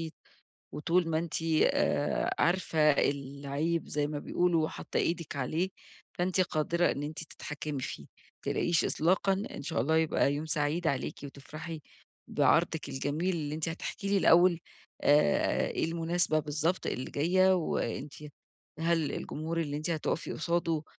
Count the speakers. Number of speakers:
1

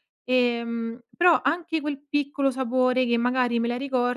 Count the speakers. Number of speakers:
1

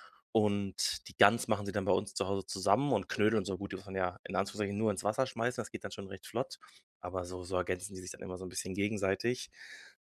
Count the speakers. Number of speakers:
1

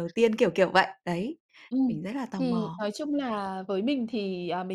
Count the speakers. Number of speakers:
2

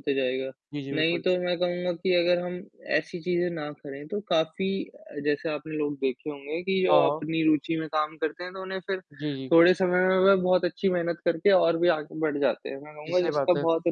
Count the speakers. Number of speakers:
2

